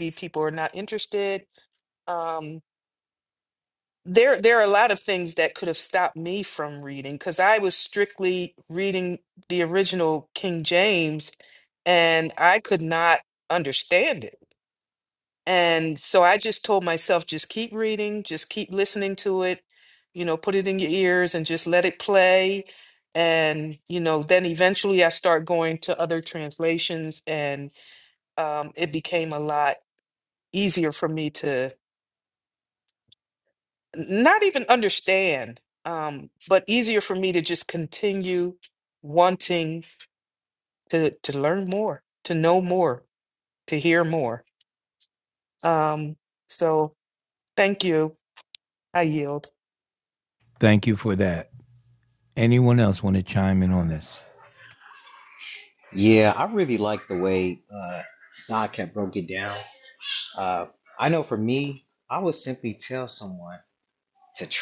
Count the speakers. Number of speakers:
three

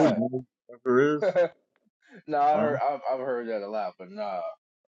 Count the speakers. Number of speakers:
two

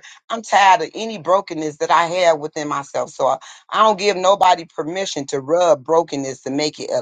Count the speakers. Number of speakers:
one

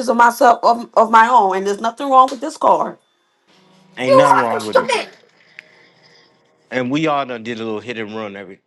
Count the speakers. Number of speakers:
two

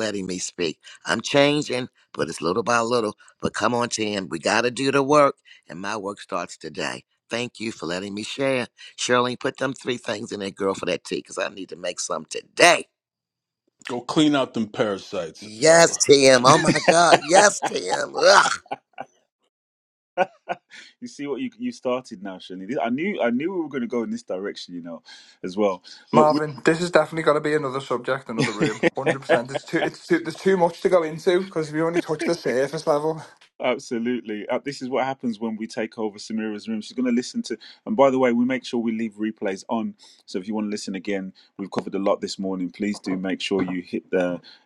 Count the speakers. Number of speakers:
four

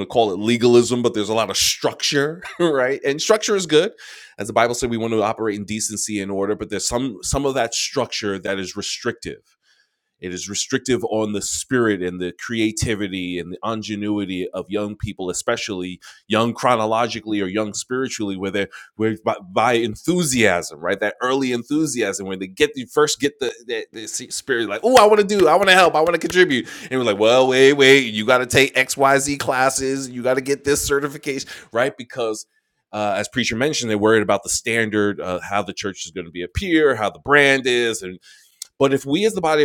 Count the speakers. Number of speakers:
one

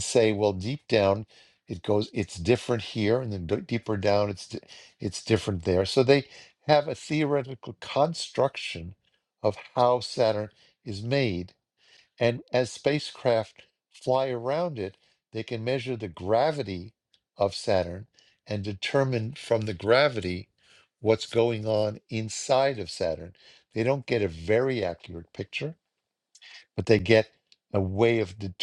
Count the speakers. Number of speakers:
one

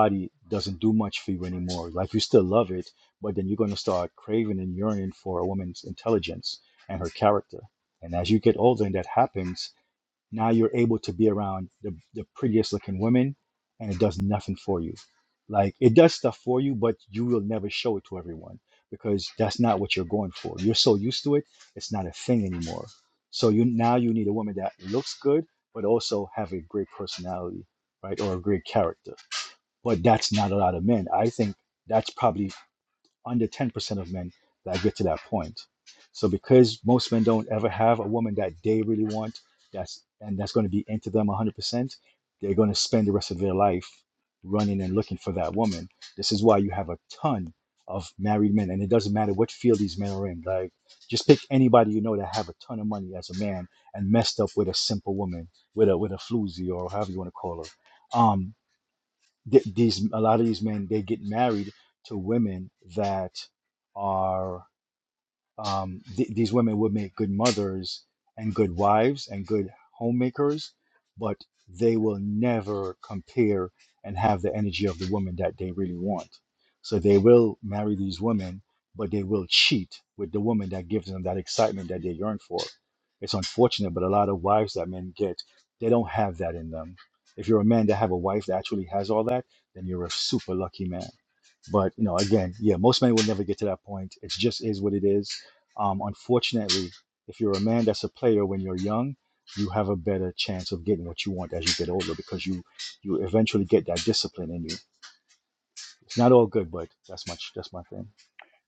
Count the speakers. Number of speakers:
one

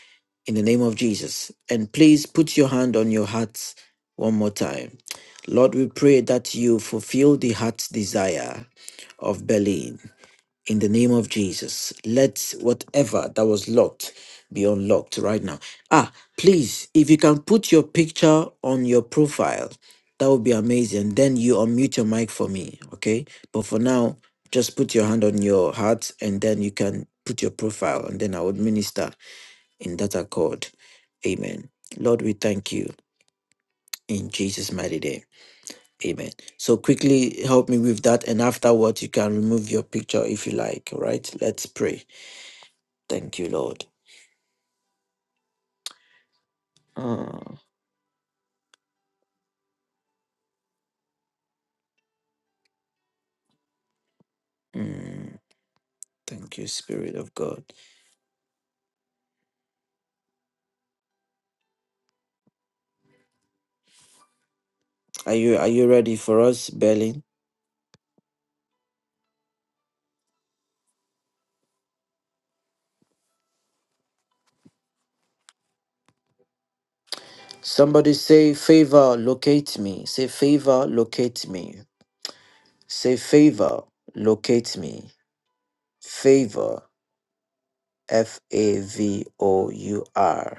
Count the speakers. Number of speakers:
one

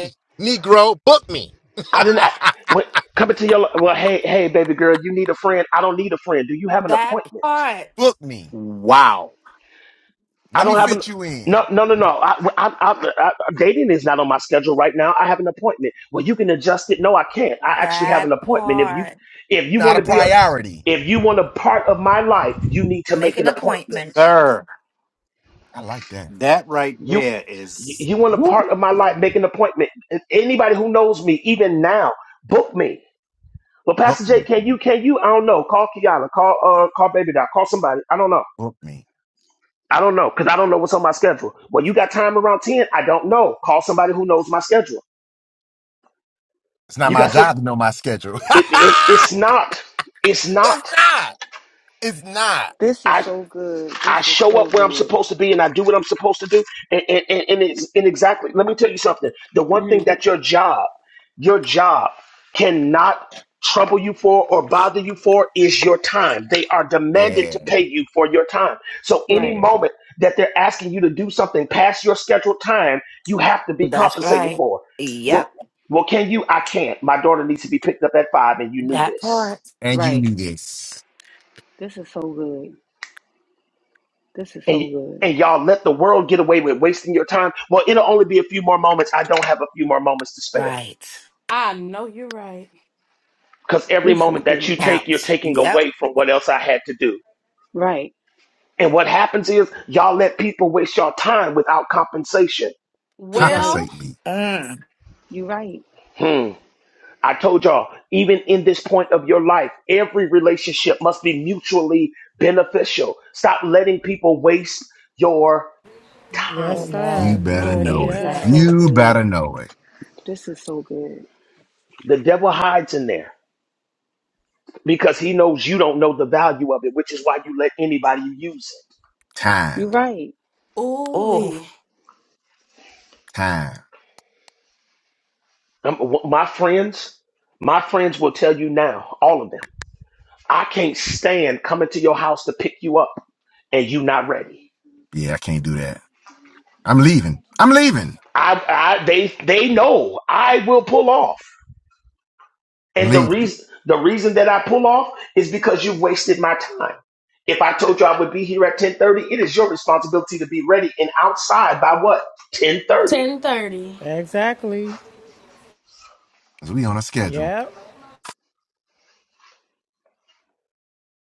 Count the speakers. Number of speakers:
seven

